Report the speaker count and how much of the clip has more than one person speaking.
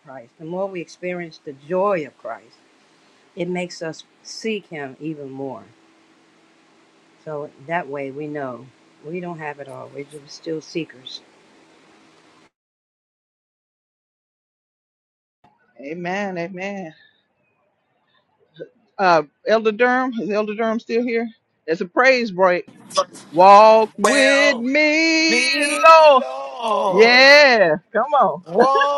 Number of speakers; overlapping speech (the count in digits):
3, about 7%